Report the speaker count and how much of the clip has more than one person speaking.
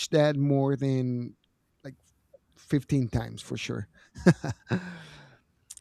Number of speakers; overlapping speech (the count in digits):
1, no overlap